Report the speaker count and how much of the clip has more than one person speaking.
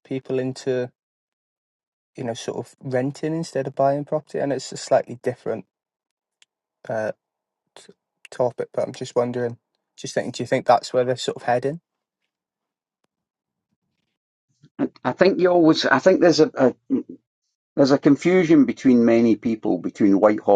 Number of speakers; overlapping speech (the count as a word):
two, no overlap